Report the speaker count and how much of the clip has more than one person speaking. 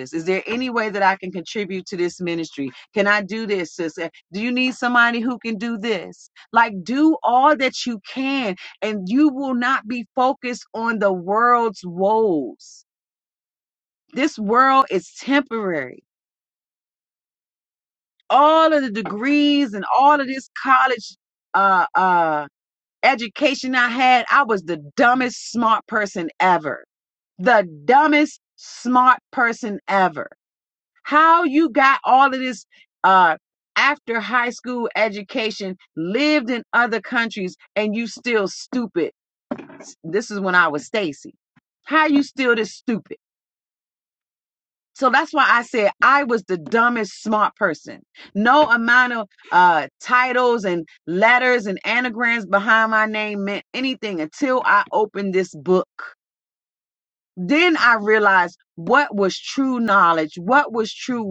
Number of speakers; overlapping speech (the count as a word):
one, no overlap